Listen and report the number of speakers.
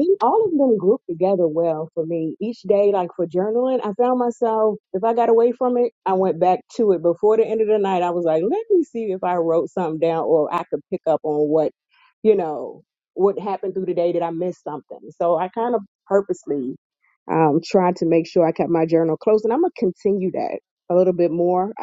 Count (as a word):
one